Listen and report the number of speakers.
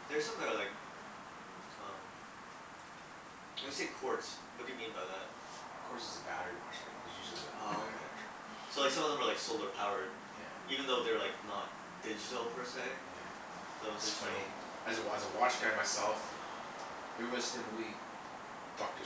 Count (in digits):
2